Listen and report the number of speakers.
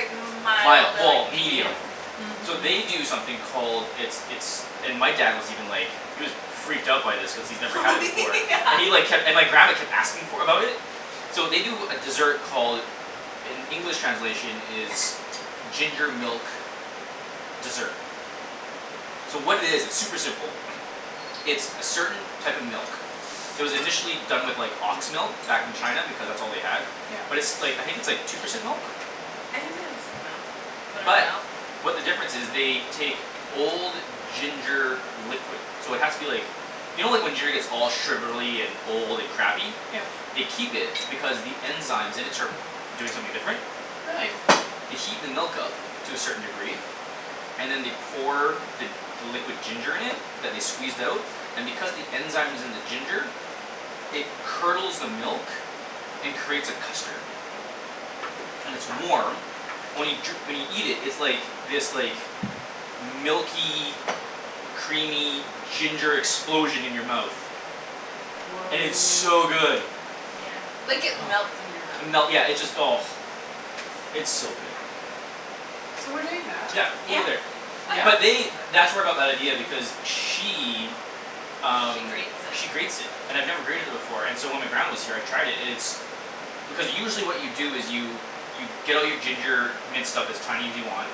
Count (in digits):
3